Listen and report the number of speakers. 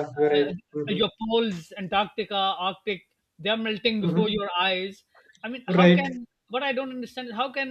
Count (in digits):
2